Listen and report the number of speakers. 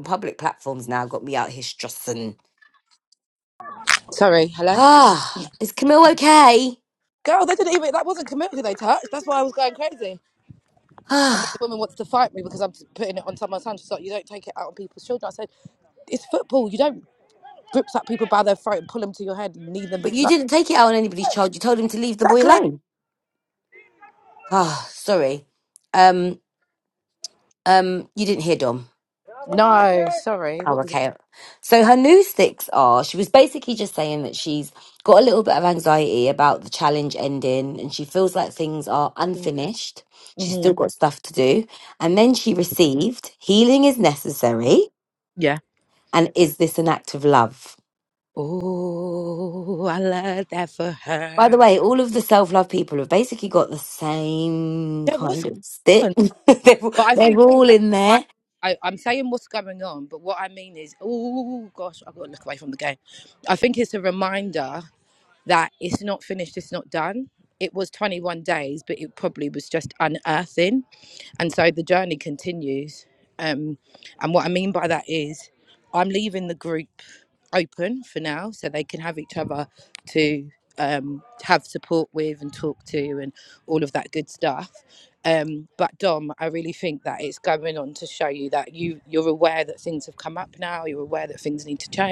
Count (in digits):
2